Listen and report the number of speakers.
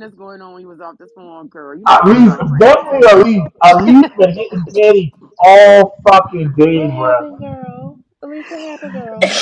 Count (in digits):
3